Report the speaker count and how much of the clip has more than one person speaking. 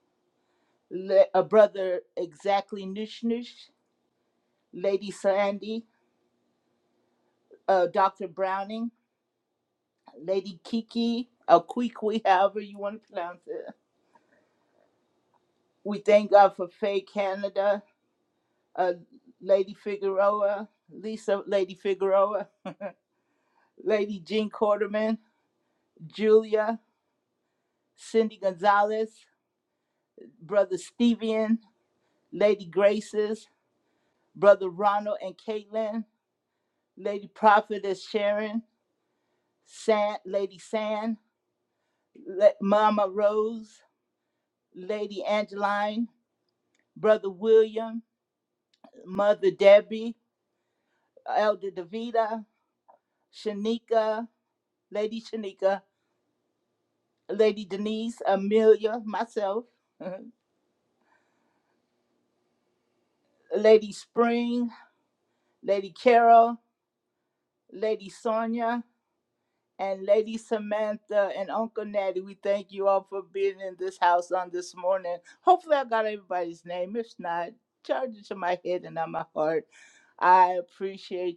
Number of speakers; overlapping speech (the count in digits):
1, no overlap